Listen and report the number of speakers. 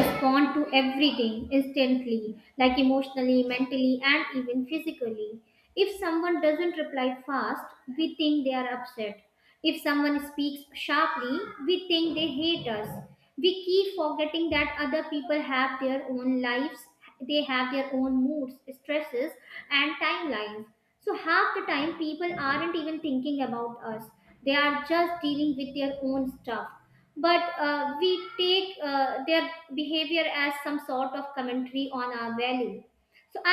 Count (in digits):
1